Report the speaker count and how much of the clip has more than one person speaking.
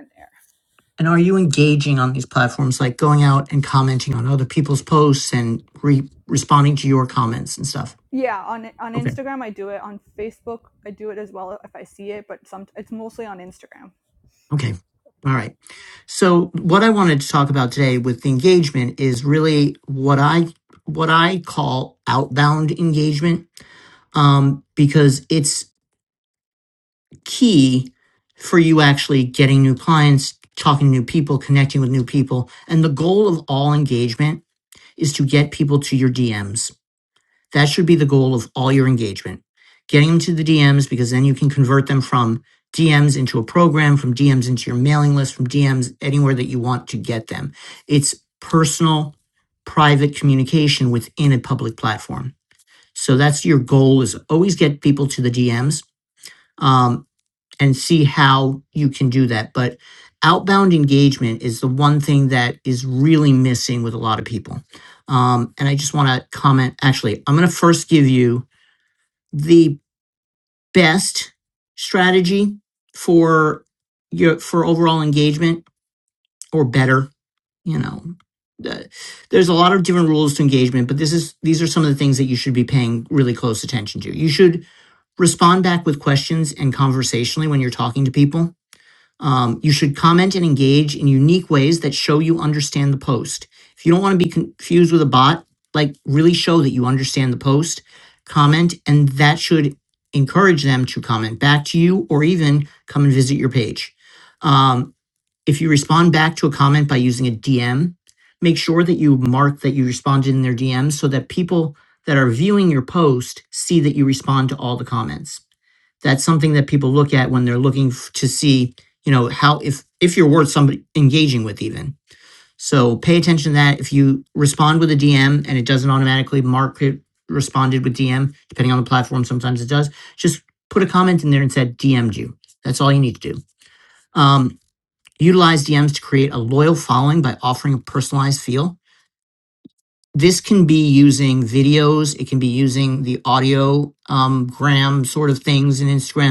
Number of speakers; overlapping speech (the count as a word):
two, under 1%